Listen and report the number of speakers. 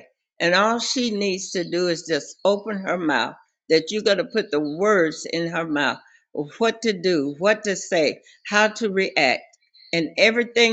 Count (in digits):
1